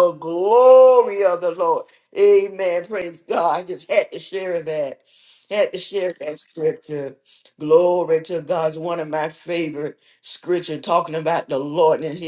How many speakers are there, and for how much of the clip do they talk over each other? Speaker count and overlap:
1, no overlap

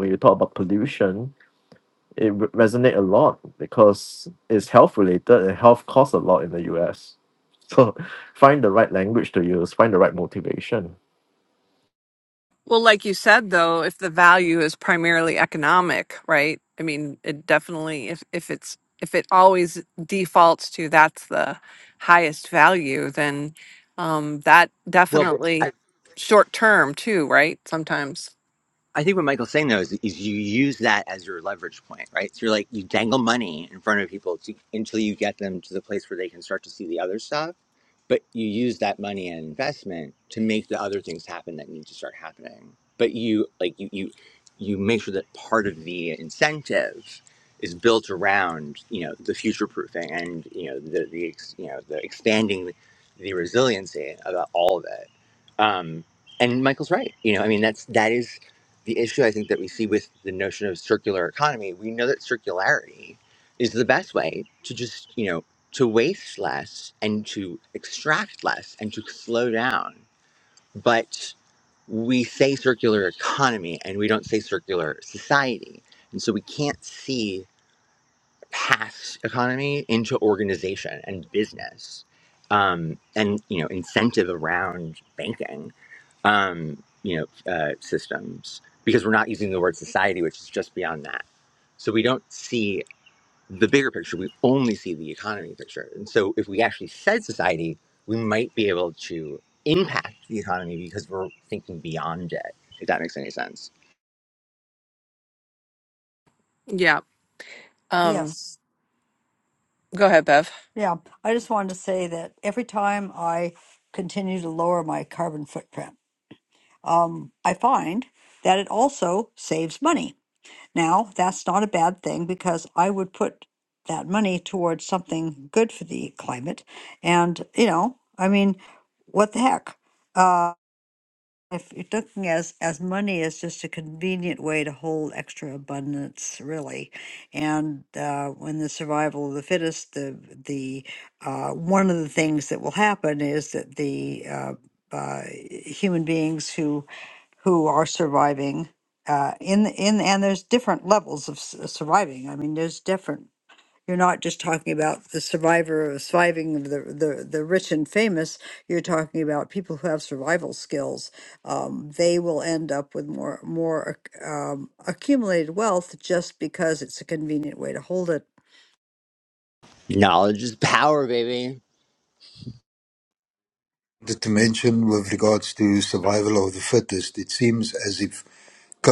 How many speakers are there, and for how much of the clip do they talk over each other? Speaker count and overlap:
5, under 1%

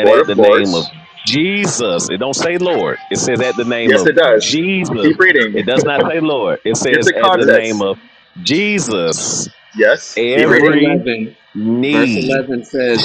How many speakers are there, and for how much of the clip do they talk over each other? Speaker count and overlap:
3, about 27%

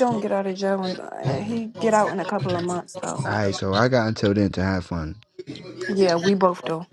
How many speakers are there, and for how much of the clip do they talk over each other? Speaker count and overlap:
2, no overlap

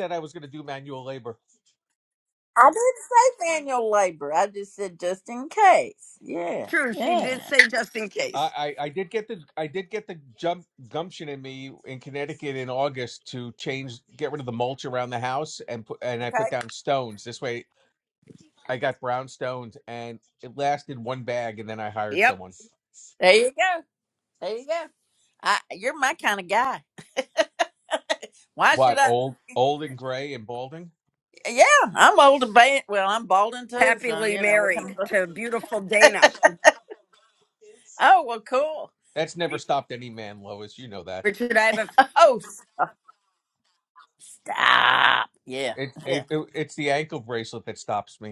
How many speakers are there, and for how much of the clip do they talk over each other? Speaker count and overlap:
3, about 7%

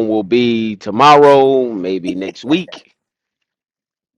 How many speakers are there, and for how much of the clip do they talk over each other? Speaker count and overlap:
1, no overlap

